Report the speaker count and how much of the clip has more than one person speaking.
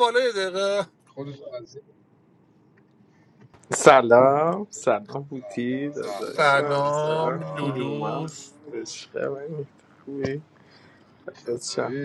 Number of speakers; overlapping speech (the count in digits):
3, about 22%